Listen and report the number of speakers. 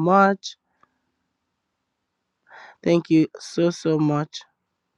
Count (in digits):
1